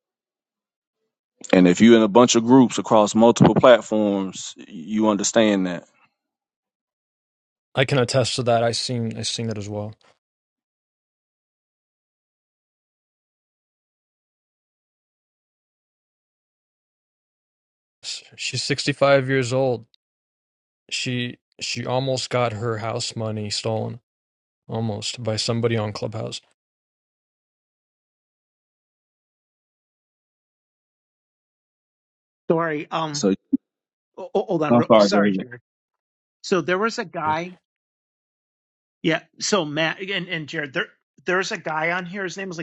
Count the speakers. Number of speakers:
3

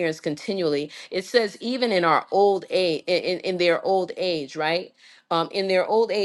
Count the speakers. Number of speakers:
1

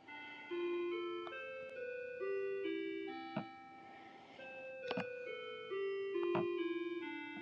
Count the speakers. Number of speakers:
0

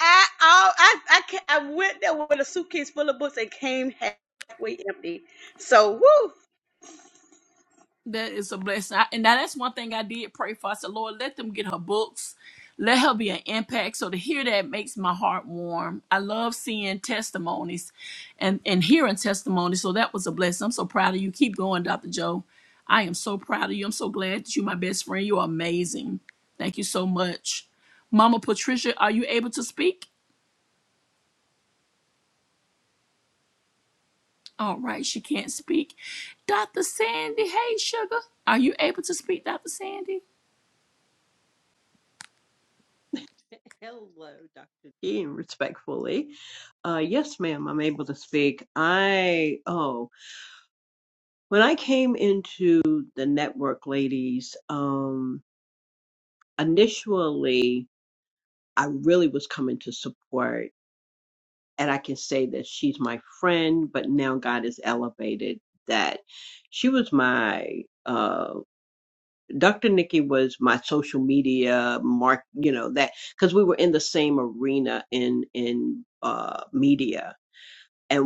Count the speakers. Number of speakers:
3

